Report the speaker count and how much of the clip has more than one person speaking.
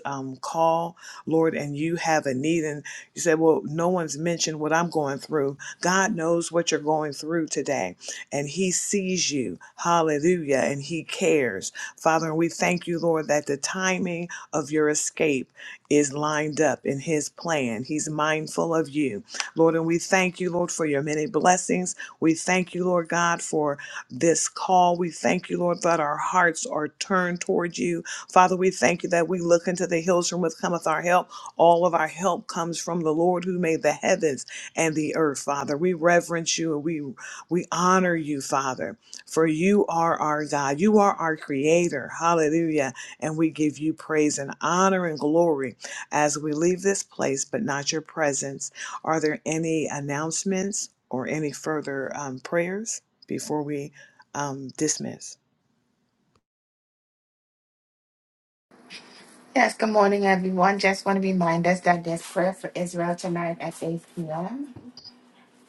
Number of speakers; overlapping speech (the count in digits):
2, no overlap